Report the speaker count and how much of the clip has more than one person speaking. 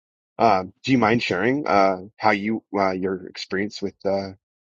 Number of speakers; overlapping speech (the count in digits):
1, no overlap